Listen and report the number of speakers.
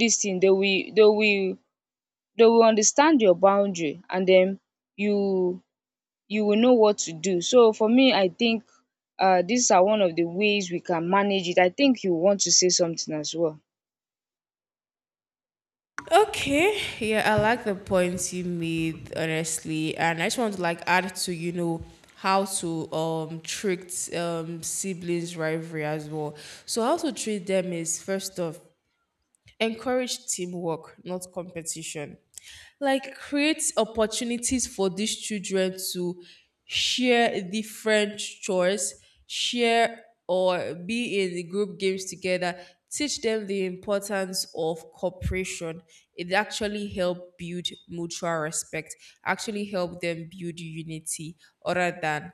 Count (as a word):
two